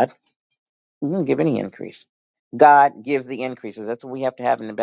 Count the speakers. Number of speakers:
1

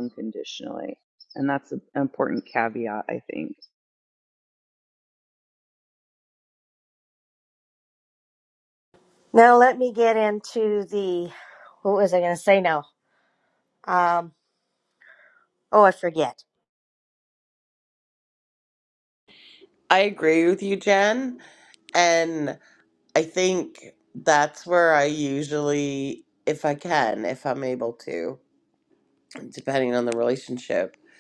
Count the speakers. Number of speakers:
3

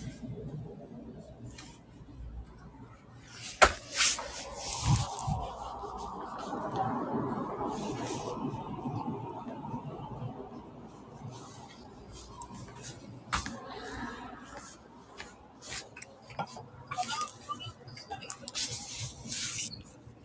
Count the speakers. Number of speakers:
0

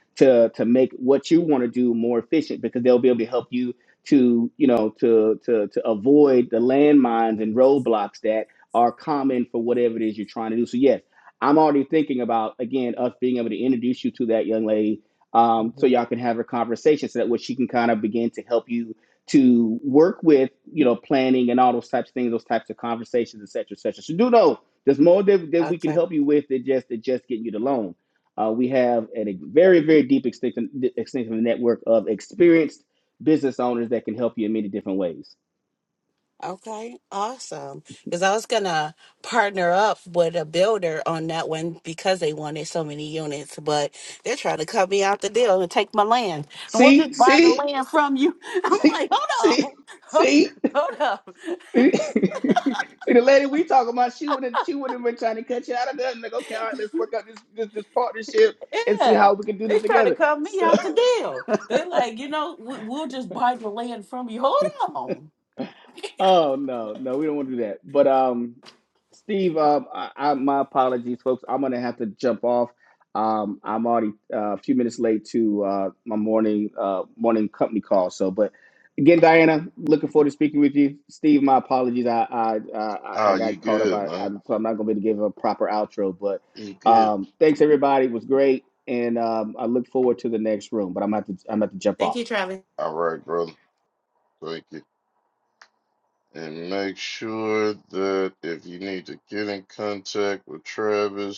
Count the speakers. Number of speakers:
3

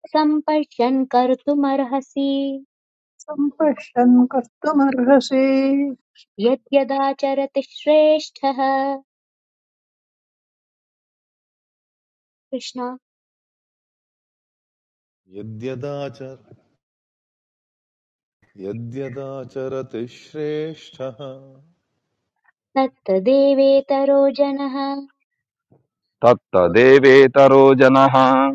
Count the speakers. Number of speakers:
4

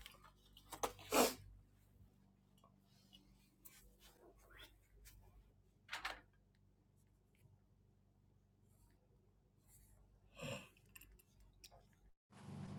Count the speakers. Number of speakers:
0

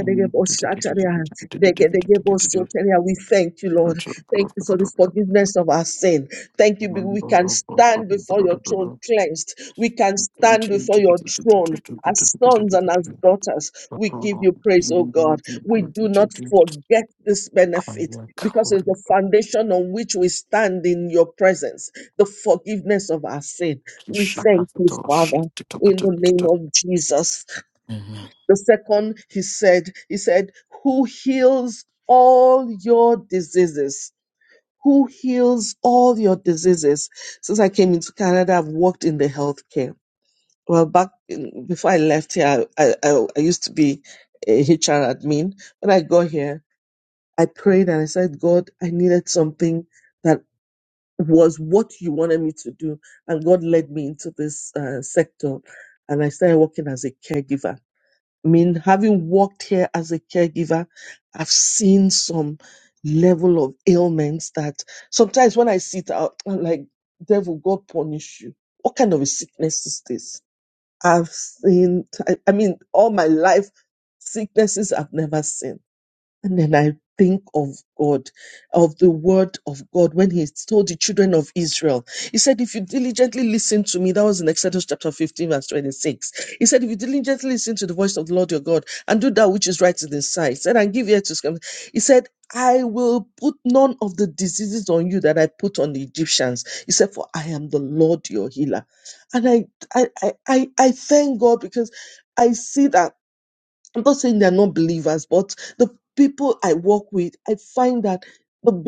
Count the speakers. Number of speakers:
2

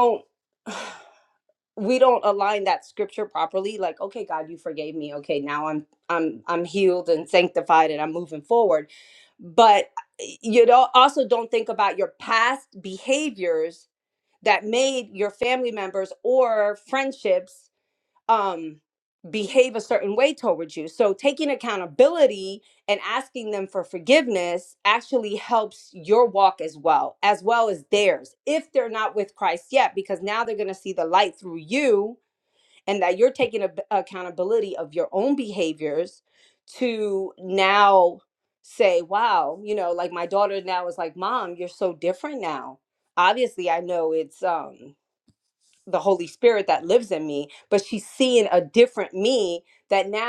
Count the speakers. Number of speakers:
1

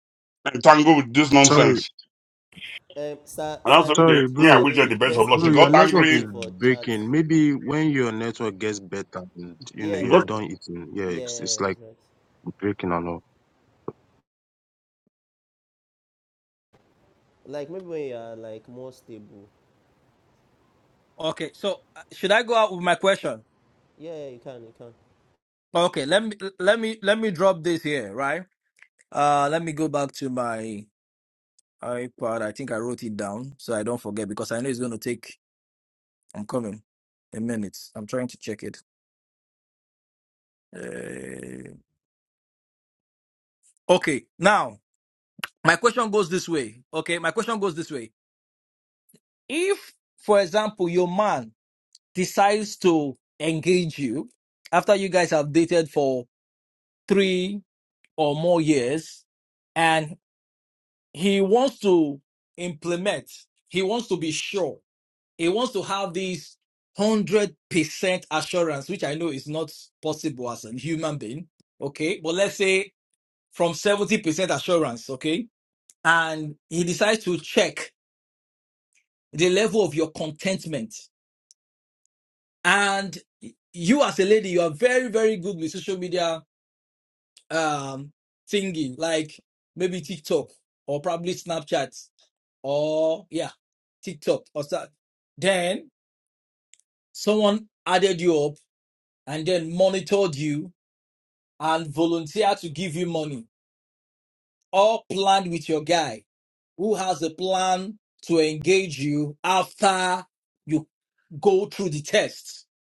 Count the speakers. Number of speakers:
4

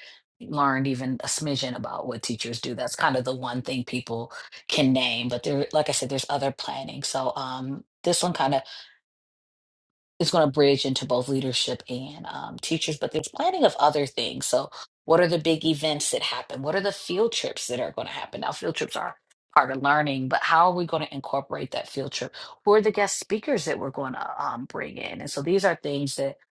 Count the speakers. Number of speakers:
1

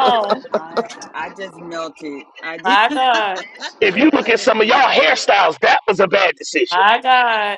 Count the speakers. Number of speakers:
3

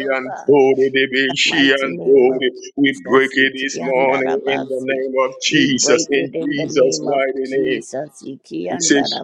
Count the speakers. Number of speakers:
2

